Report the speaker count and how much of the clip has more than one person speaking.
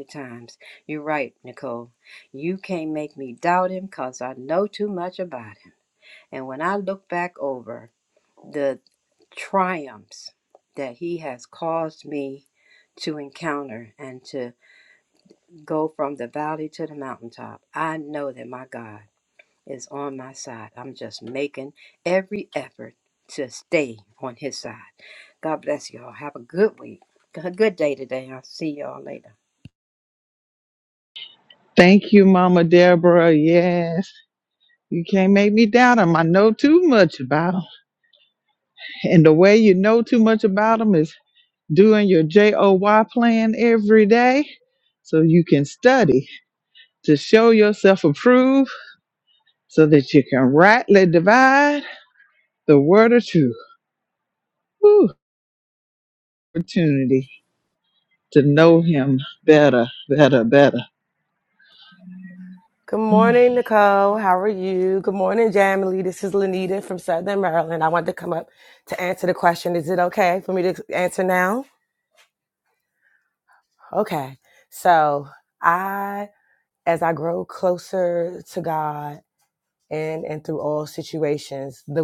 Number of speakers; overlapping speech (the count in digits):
3, no overlap